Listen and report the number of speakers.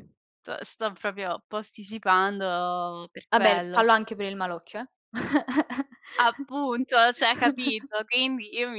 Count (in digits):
2